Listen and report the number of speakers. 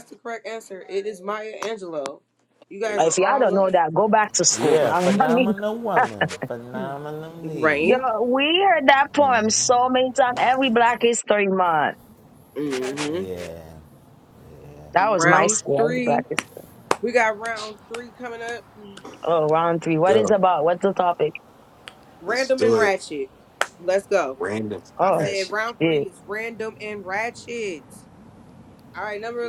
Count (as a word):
four